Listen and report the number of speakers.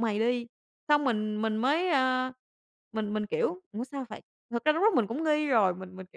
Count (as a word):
one